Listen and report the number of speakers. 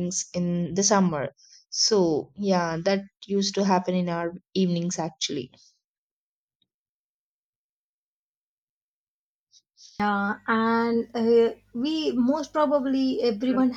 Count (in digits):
2